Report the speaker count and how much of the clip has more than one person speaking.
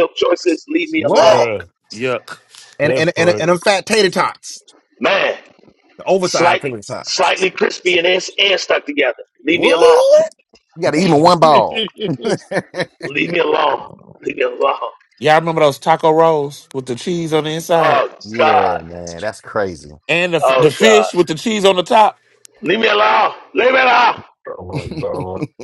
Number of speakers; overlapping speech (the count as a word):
four, about 14%